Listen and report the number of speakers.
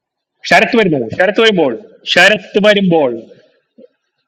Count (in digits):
1